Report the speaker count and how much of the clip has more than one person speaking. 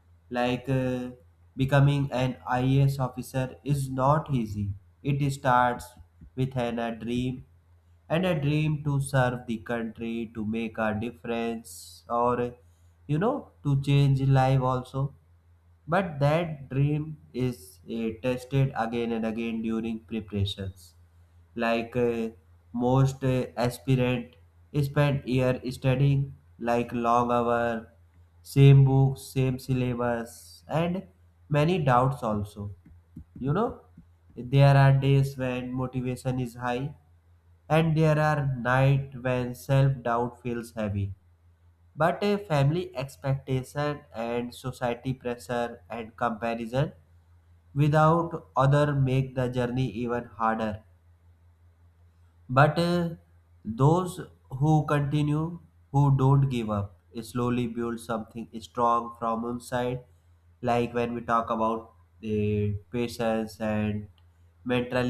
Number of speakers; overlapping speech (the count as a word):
one, no overlap